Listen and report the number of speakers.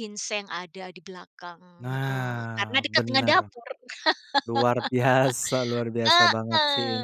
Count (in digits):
2